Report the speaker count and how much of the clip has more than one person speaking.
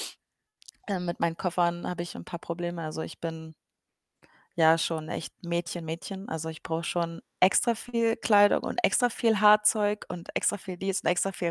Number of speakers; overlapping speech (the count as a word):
one, no overlap